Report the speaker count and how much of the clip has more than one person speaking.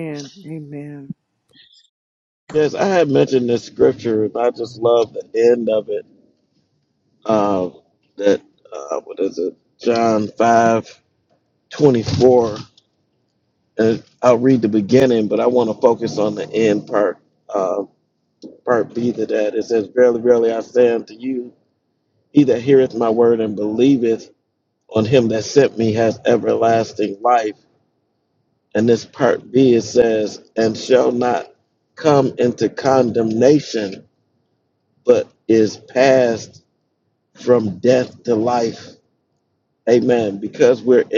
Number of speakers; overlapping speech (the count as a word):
two, no overlap